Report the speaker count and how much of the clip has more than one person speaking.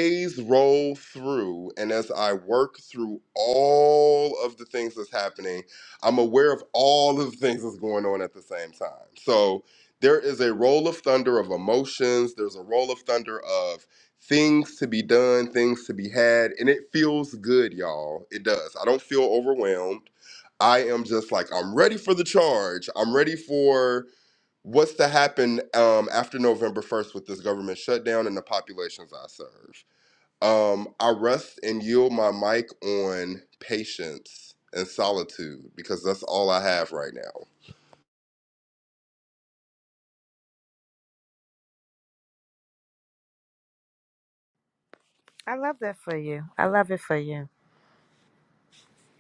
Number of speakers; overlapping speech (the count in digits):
2, no overlap